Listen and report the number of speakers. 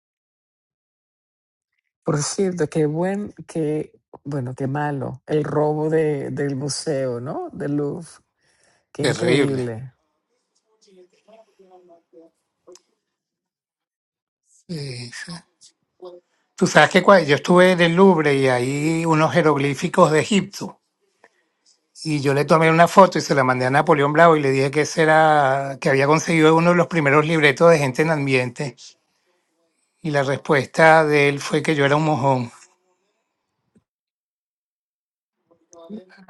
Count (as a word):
two